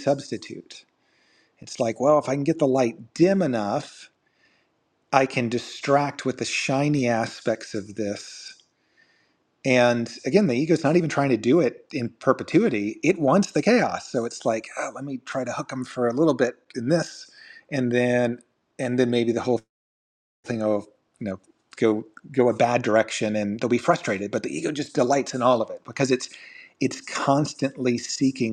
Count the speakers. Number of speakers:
1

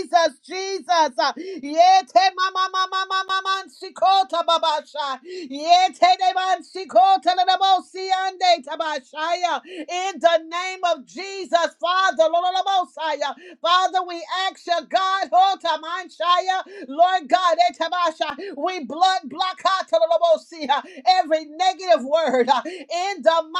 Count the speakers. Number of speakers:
1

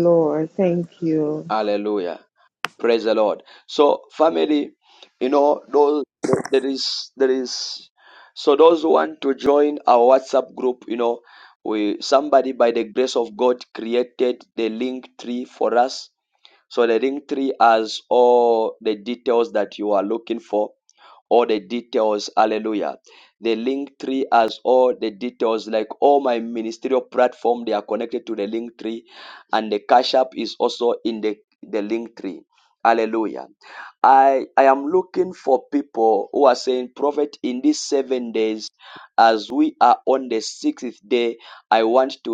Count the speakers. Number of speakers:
2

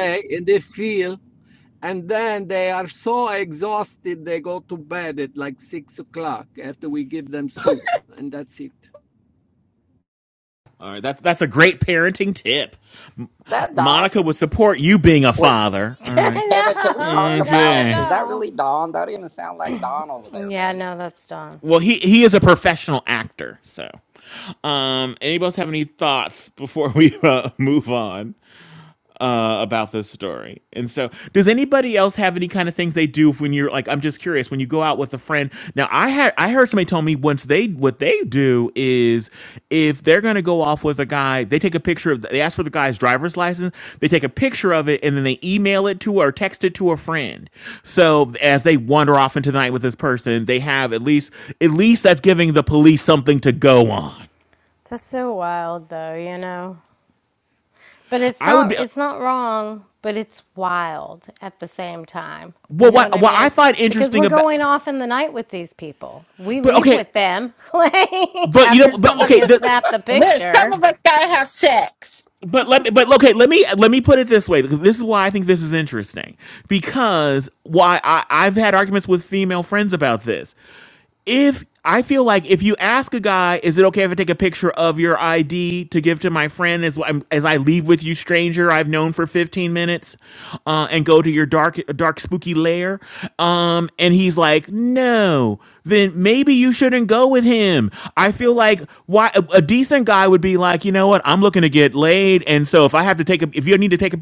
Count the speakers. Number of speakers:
5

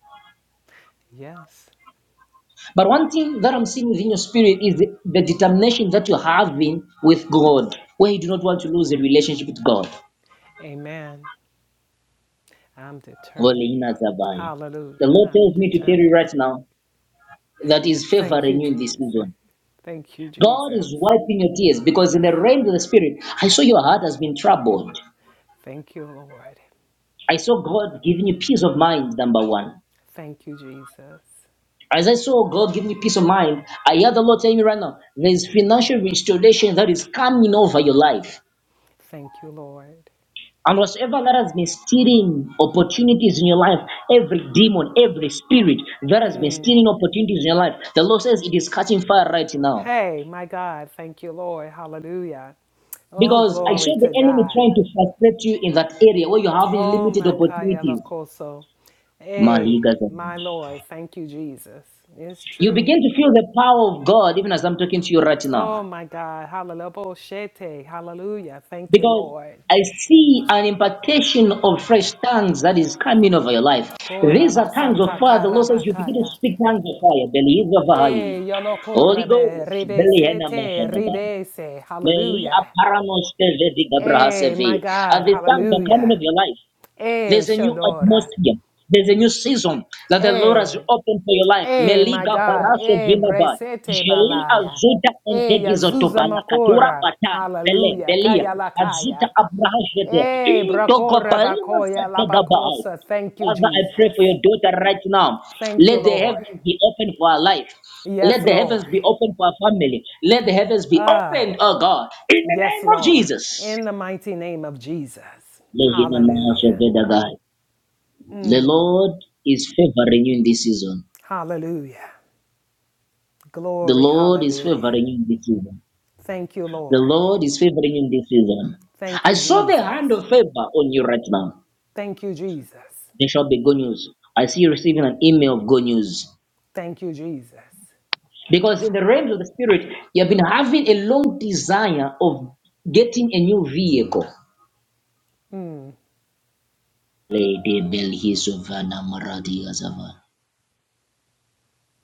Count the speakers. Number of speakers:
2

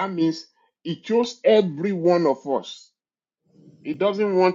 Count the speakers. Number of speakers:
1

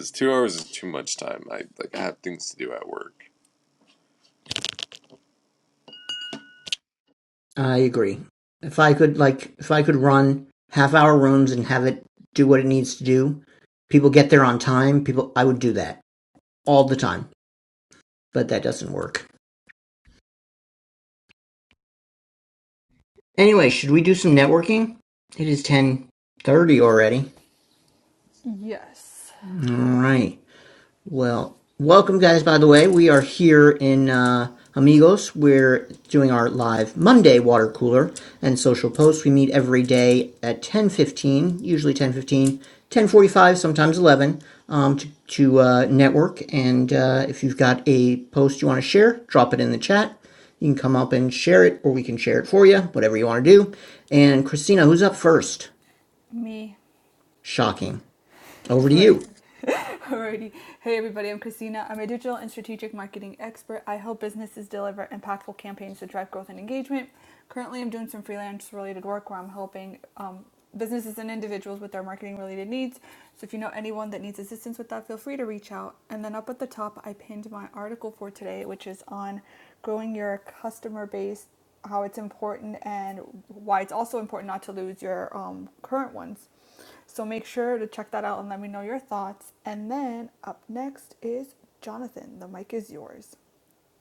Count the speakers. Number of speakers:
3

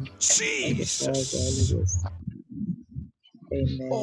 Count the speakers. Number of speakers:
2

